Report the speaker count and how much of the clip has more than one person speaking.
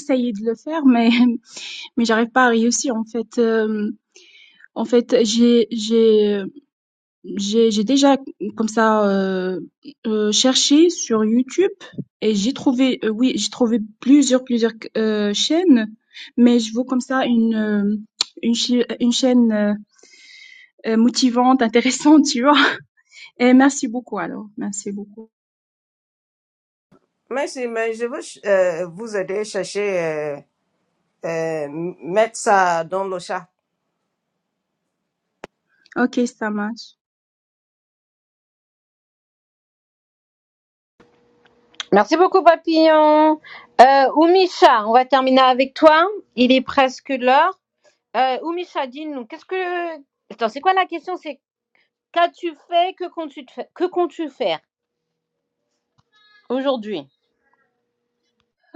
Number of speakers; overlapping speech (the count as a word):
three, no overlap